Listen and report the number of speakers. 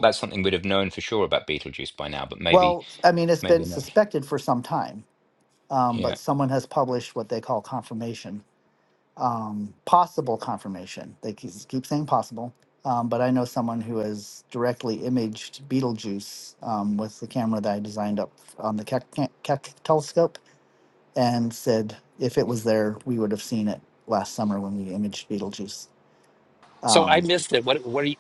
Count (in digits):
3